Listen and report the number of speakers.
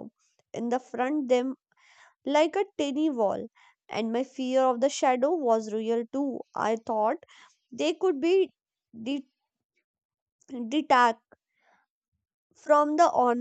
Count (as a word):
one